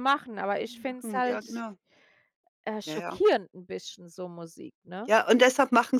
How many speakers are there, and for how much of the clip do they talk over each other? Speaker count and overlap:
2, about 14%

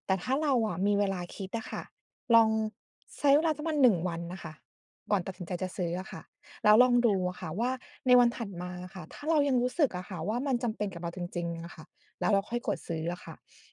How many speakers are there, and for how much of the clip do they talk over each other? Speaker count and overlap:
1, no overlap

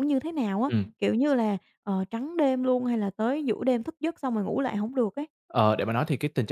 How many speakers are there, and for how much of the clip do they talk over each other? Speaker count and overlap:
2, about 3%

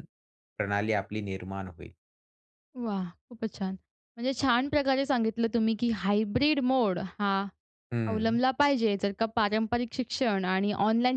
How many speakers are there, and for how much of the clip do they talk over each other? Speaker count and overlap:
2, about 3%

